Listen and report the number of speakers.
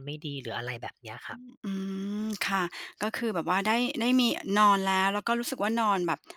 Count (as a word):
two